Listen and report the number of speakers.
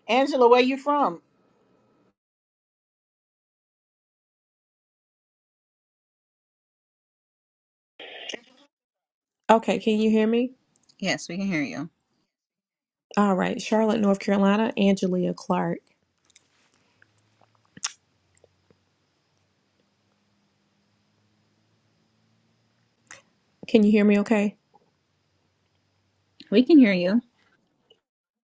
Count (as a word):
three